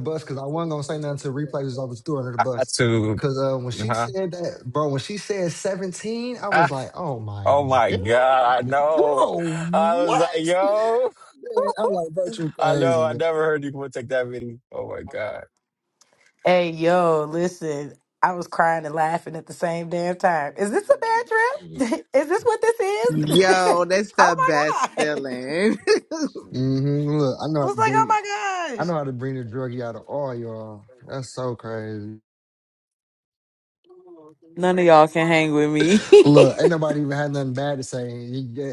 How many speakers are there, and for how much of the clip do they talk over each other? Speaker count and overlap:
five, about 14%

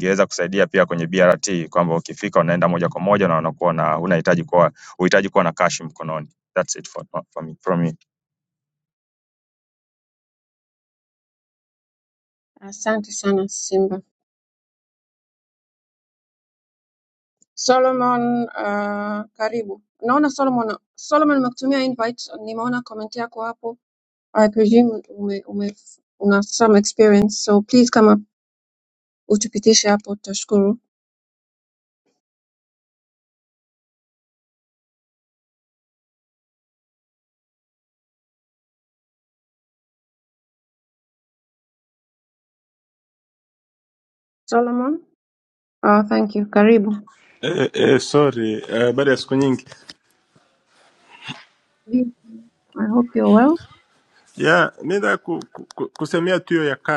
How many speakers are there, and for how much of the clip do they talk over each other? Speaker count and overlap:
three, no overlap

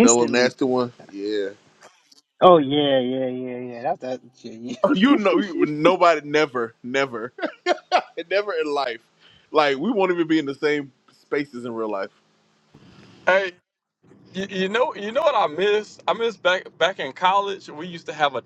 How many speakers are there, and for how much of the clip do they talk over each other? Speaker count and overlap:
three, about 7%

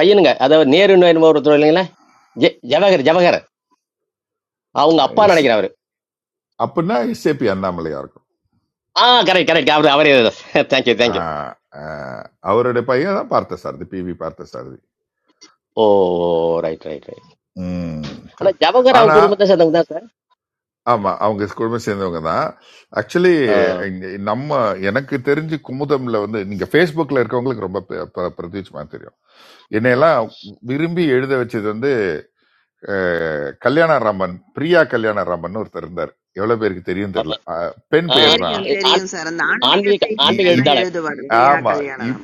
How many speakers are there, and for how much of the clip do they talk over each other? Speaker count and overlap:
three, about 9%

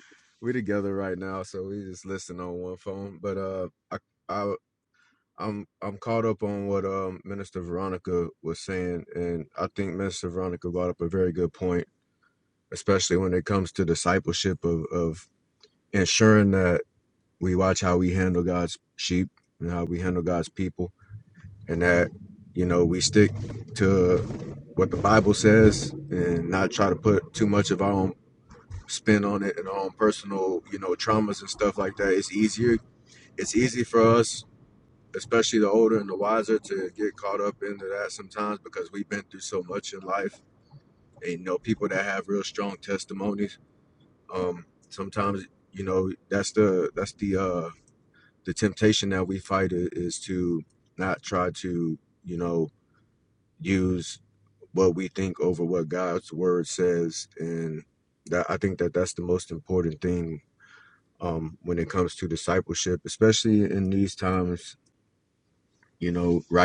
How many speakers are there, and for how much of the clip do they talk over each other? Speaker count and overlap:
one, no overlap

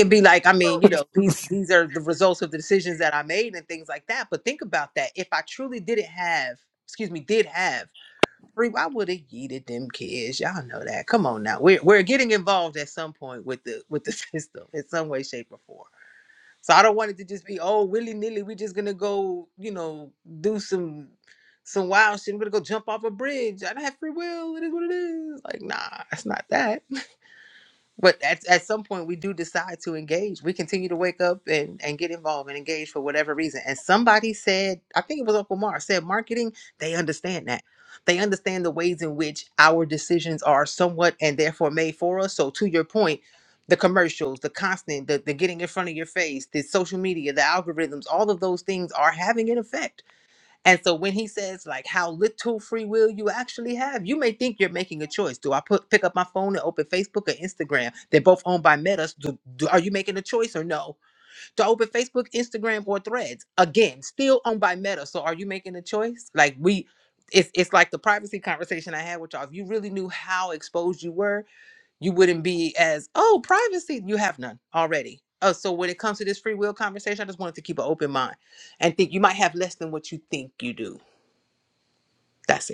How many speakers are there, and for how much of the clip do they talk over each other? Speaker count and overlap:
one, no overlap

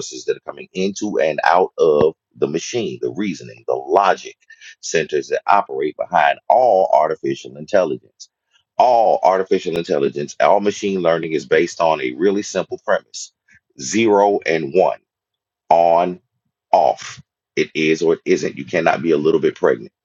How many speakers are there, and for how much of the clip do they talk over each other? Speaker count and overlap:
one, no overlap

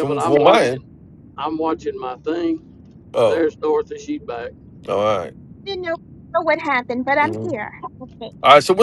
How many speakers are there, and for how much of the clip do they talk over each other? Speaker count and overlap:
three, about 13%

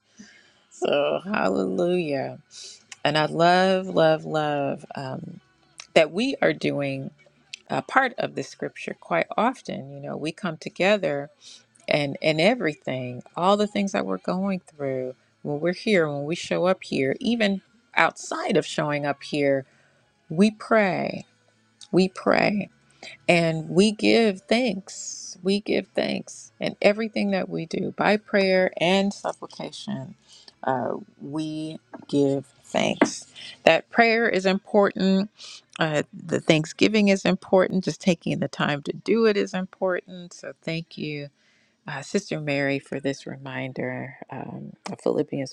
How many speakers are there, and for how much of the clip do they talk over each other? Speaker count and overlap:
one, no overlap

